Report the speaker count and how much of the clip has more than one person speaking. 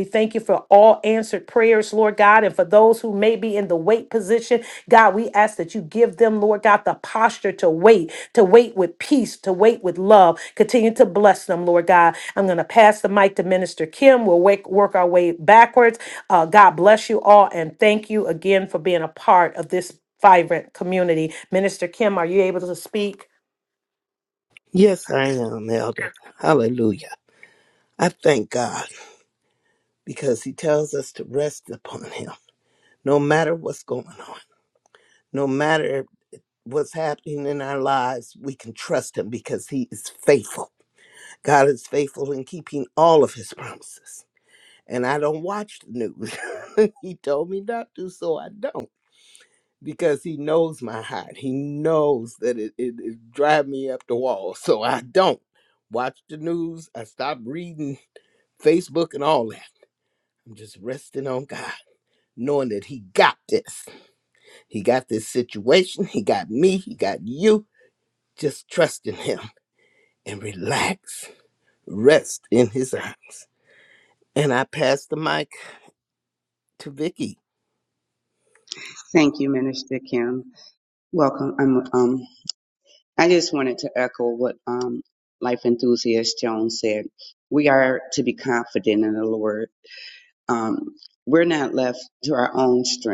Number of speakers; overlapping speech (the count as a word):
three, no overlap